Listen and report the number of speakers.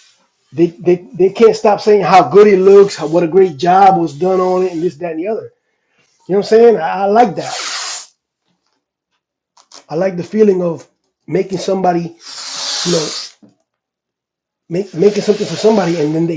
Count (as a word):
one